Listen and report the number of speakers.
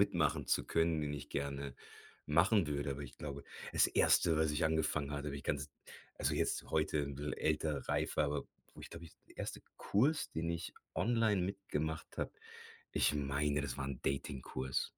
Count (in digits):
1